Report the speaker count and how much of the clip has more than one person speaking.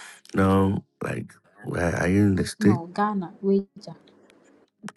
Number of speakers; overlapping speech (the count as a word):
two, about 4%